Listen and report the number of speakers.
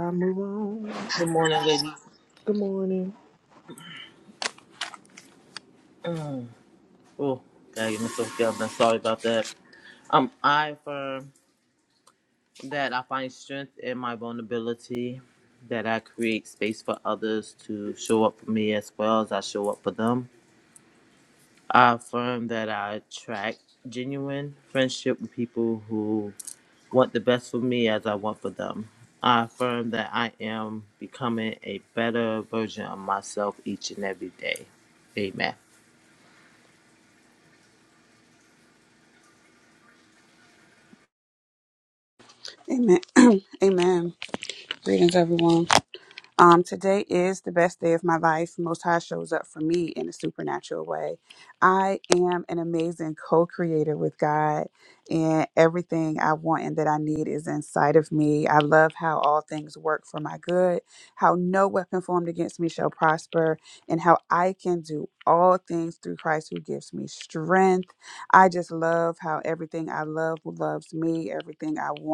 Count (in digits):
3